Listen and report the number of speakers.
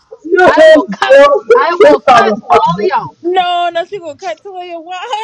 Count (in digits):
3